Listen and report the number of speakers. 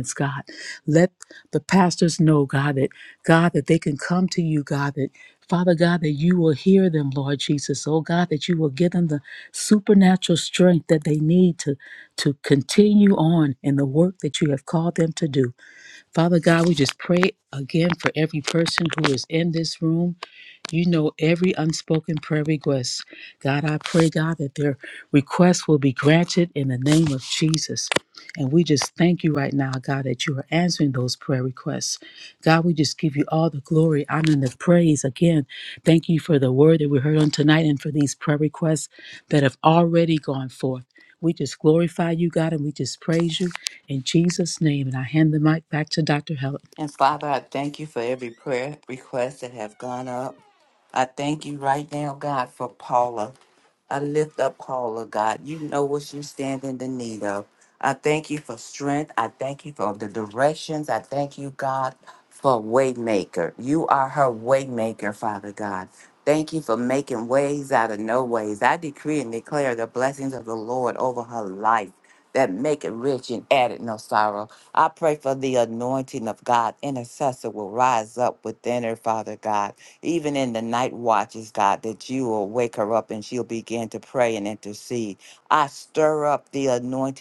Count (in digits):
2